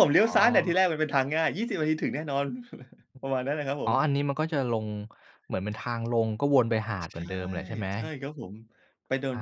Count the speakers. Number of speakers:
two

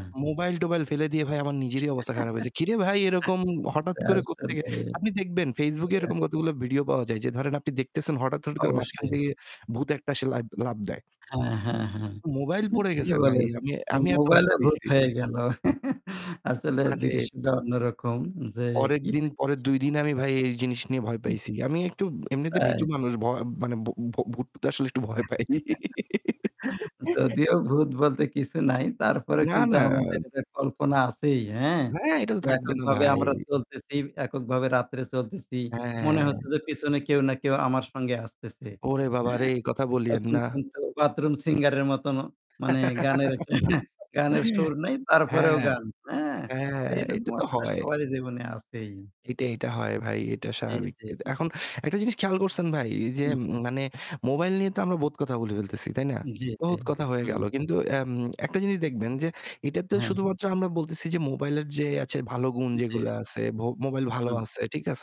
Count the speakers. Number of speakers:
two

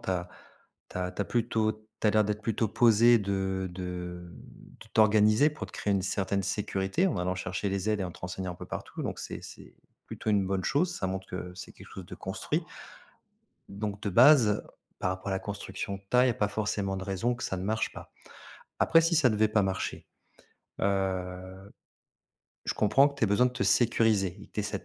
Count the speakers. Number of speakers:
one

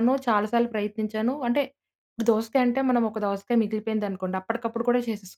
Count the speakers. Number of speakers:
one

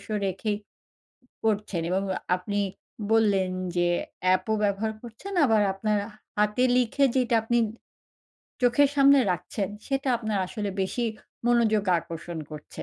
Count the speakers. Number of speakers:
one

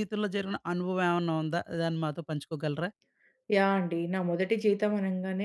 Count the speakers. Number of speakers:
two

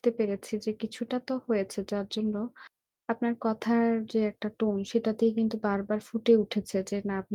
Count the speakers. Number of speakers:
one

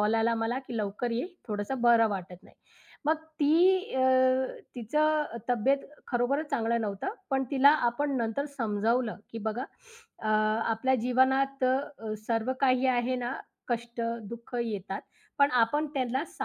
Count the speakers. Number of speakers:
one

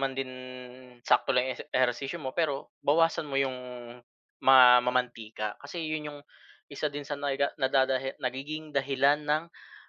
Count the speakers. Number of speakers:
one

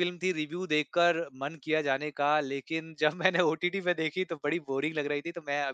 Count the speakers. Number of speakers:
one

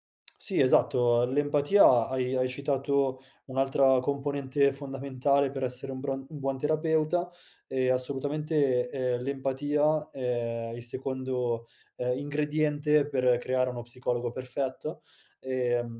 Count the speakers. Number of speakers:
one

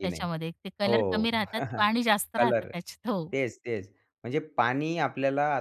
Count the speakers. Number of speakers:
two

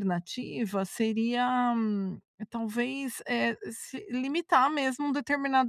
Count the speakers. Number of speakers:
one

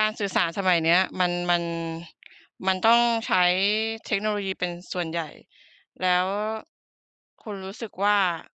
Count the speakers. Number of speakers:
one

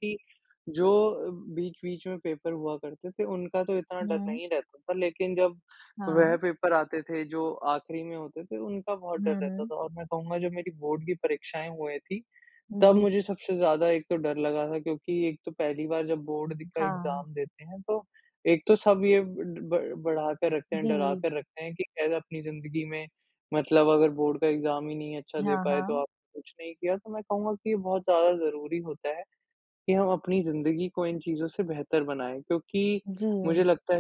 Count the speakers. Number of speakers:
two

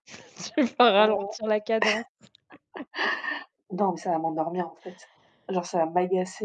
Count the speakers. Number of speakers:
two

